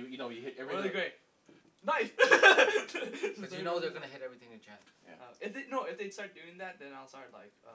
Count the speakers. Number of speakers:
3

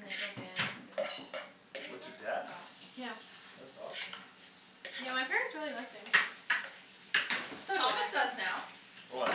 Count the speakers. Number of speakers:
3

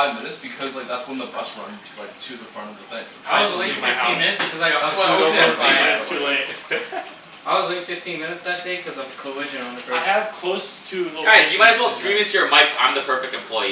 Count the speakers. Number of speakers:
4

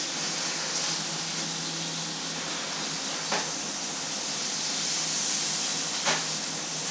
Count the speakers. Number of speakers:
0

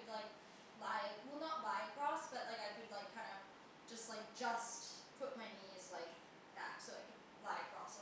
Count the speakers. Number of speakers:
1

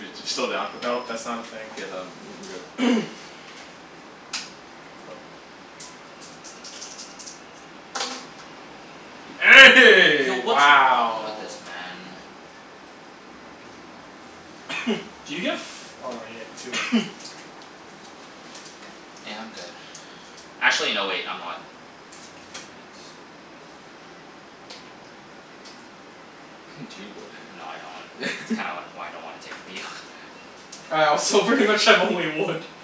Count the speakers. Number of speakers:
4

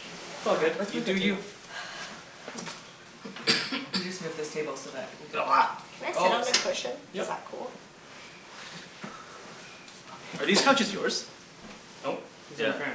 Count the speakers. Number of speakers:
4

